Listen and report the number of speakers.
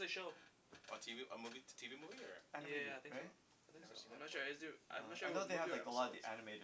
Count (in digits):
3